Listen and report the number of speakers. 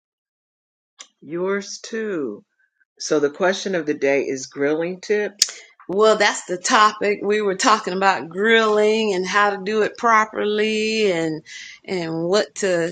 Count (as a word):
two